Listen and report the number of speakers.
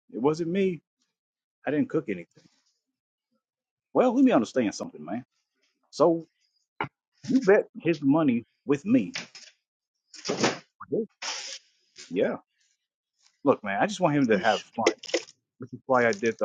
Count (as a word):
one